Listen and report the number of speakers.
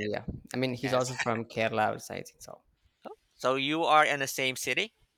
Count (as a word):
two